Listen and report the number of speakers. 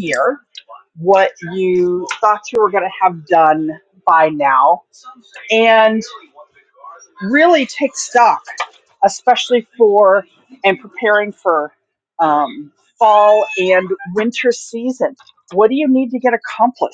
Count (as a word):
one